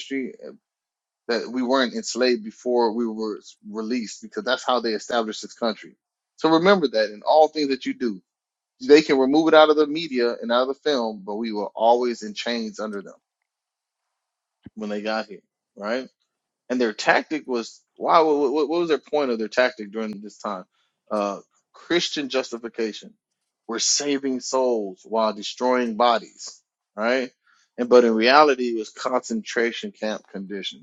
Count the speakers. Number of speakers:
one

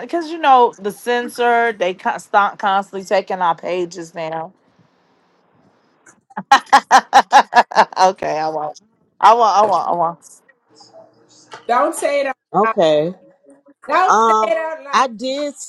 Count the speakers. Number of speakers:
three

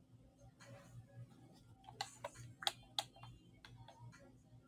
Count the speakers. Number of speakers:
zero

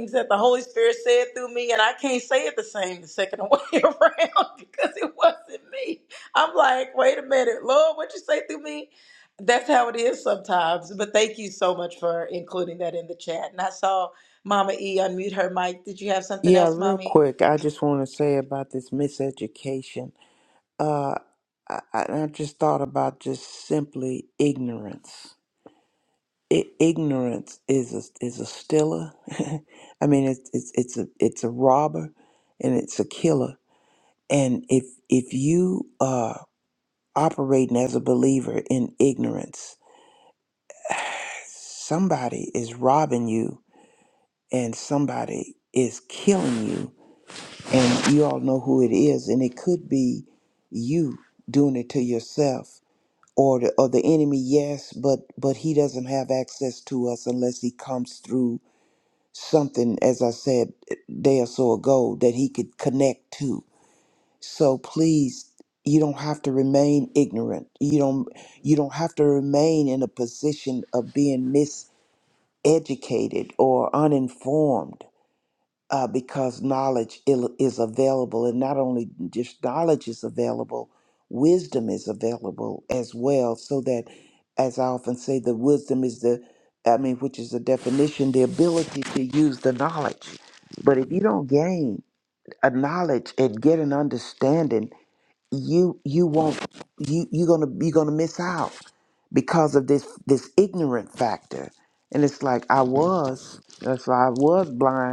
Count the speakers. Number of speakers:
two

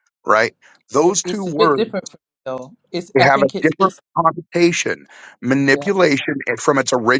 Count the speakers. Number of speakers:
two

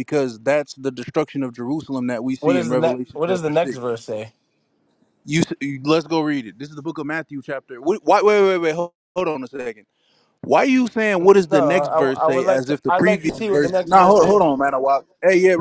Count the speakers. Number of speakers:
two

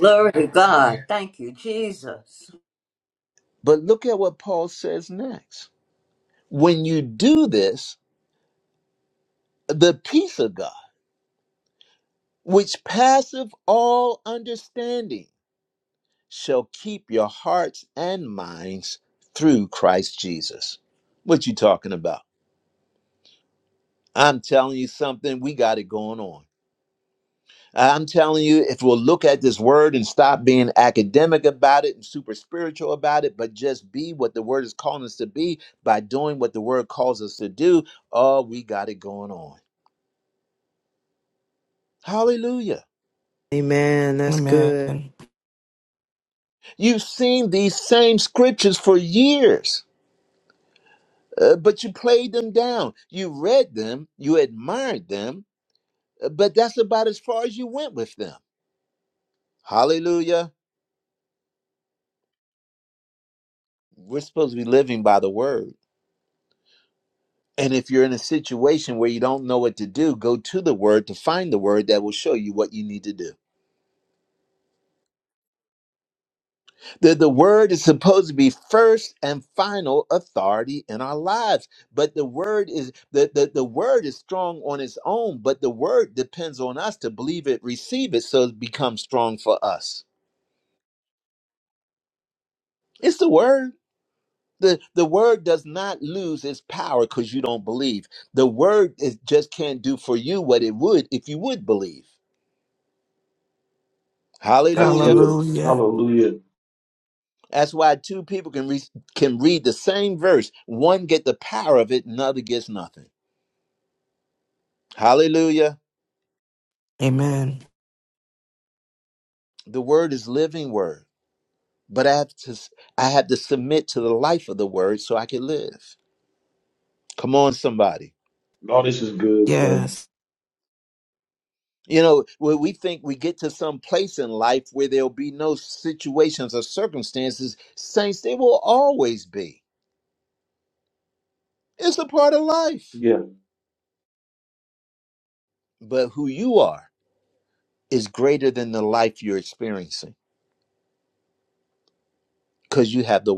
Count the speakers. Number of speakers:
five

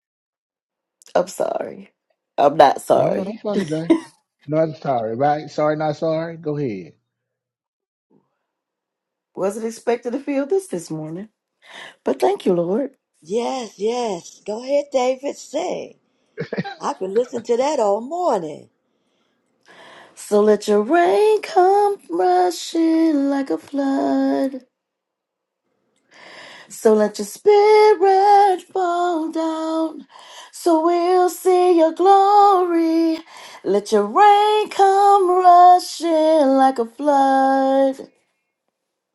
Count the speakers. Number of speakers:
three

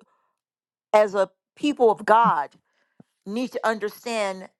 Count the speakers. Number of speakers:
one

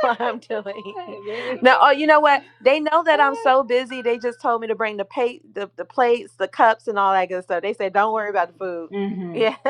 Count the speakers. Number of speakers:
two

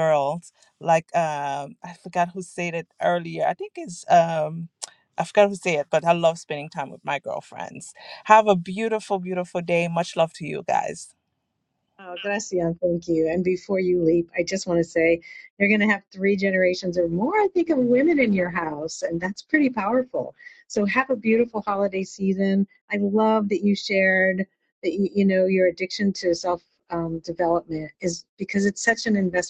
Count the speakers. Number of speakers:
two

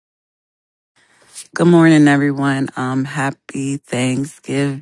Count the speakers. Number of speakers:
one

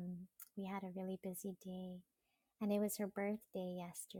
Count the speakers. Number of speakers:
one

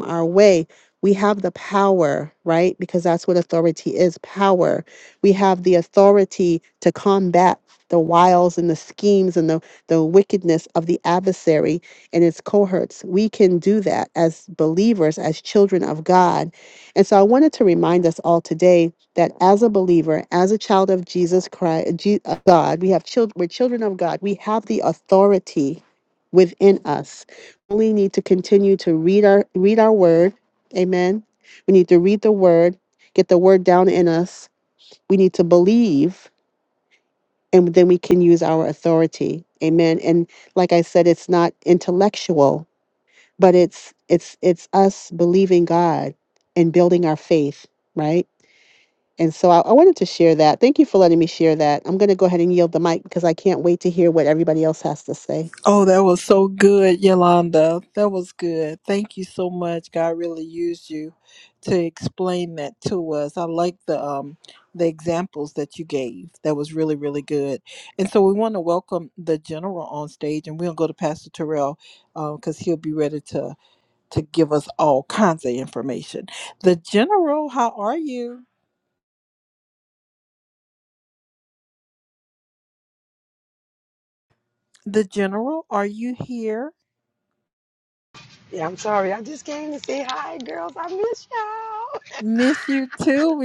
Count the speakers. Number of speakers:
three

